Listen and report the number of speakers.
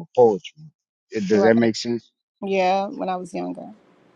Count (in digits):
2